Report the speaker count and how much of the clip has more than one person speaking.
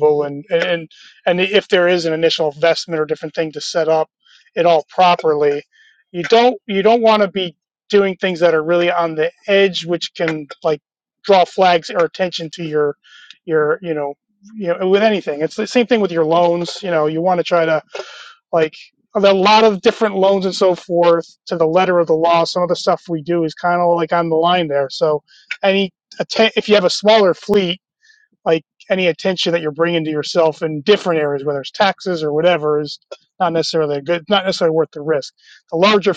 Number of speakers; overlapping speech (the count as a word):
one, no overlap